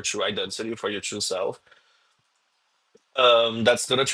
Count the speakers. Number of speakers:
one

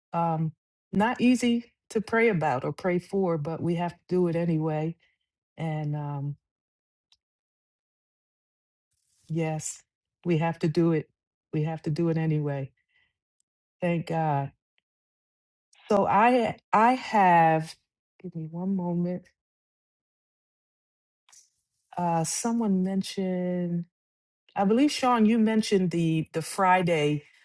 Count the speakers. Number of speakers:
one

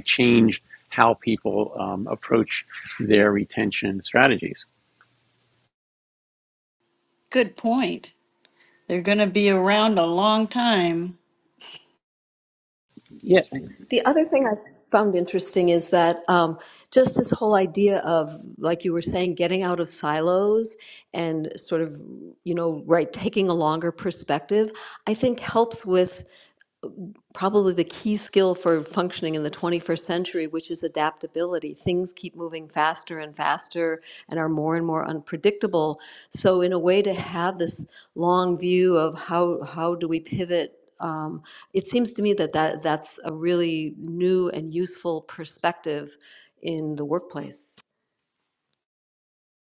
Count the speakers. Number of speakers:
three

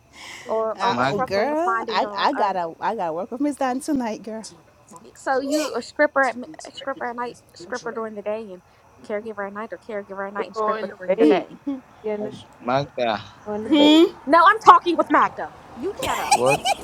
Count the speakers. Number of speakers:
four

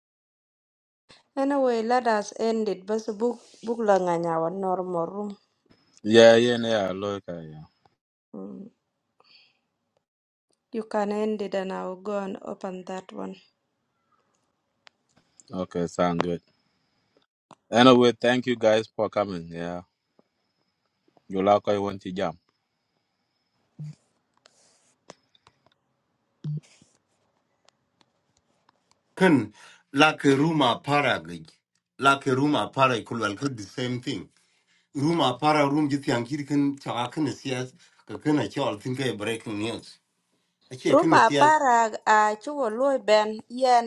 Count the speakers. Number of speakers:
three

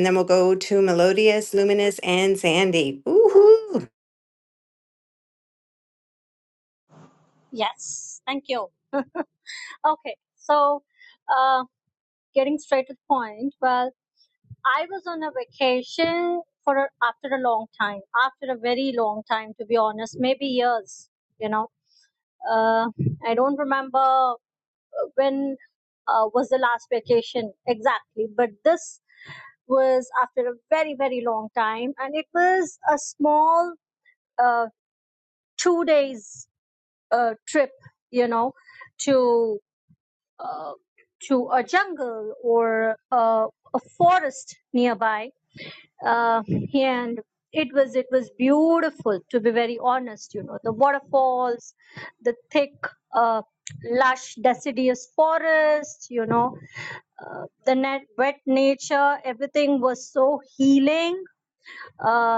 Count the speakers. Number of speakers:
two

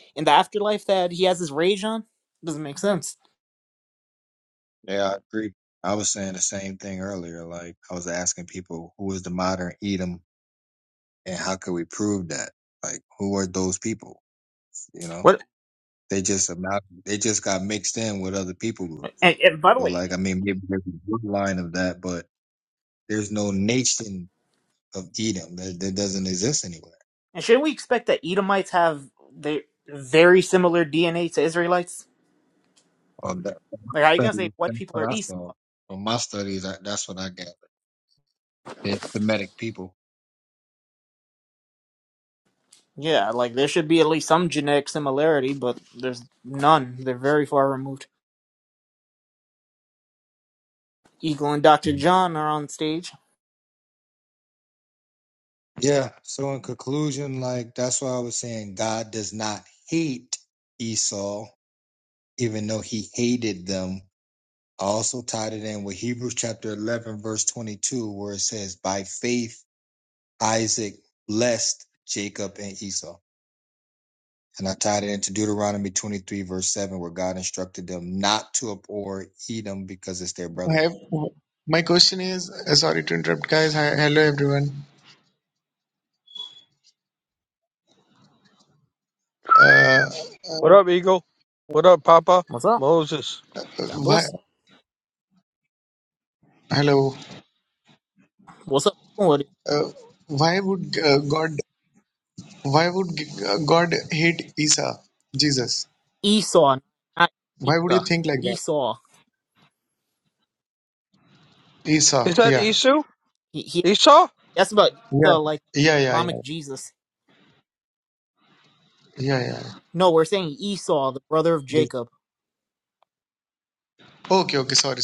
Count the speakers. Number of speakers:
four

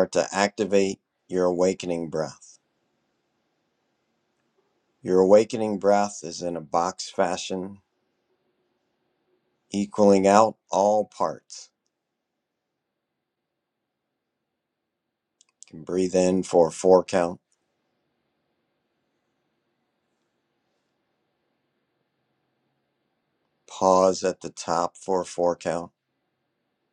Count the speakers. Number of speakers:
one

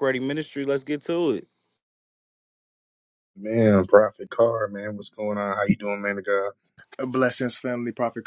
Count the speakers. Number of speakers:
three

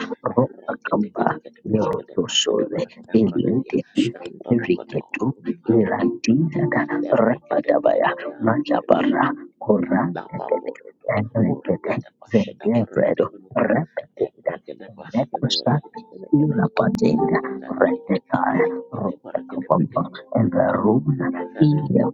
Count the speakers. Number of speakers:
two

